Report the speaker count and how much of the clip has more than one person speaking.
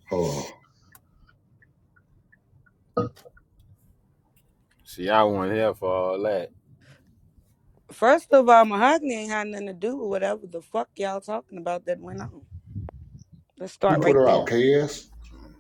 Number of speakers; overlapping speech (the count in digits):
3, about 4%